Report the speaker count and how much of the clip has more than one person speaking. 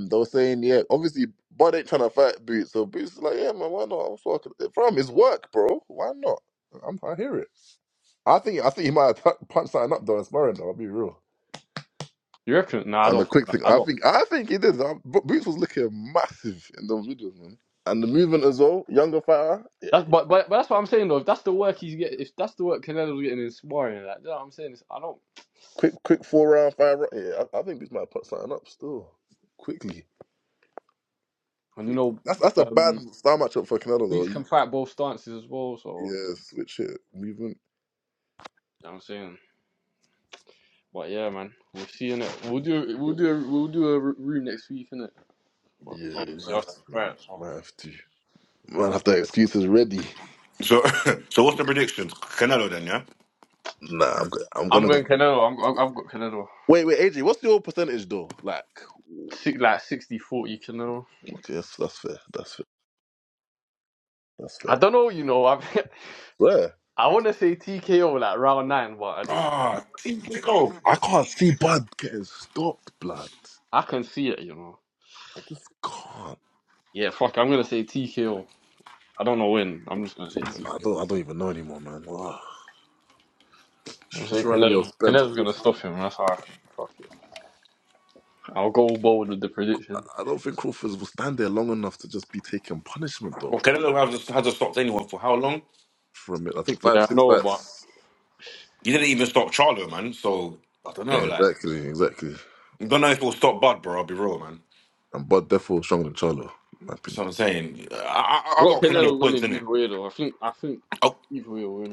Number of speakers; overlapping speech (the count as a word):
three, about 6%